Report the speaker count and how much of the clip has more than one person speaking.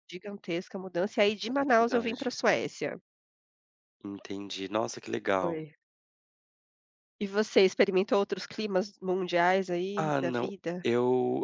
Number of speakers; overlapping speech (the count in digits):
2, about 14%